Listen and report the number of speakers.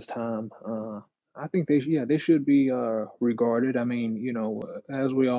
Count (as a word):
one